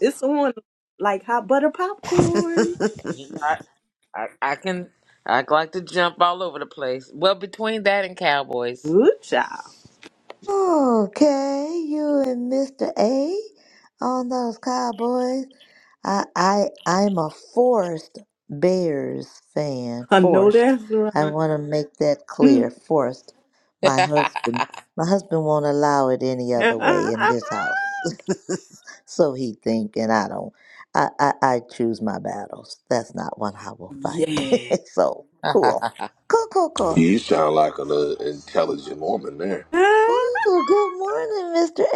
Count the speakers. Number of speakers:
four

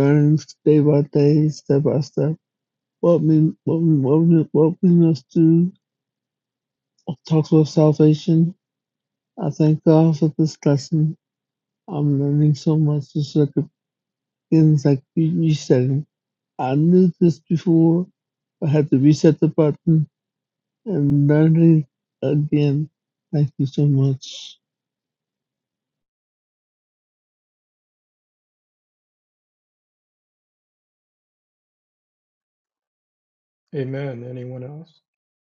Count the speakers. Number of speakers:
two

